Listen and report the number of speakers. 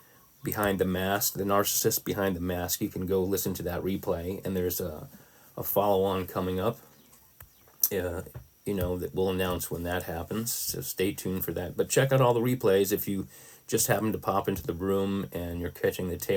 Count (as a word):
one